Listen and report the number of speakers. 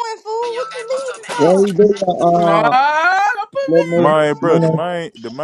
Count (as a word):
four